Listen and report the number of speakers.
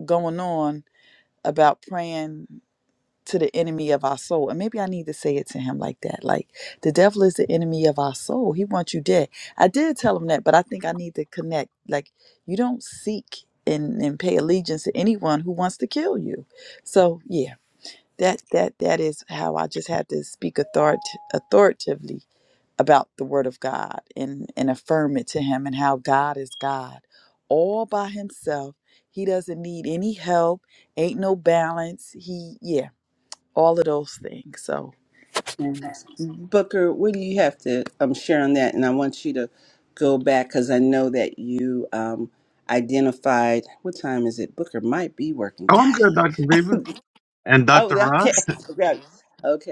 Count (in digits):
3